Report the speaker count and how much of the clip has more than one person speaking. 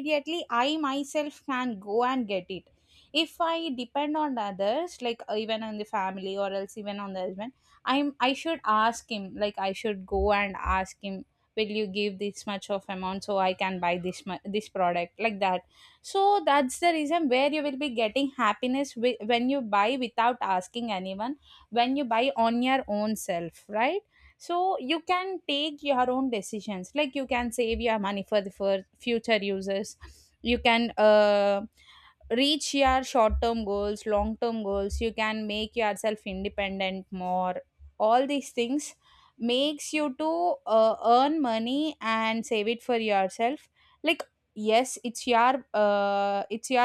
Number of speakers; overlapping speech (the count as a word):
one, no overlap